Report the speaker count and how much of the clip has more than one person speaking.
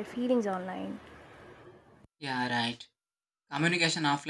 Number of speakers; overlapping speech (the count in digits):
2, no overlap